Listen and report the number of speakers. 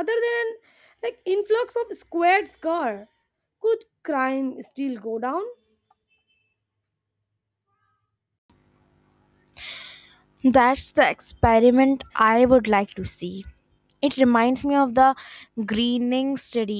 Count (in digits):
2